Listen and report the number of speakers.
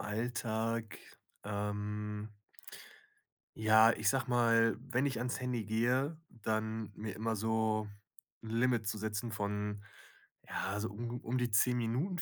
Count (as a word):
one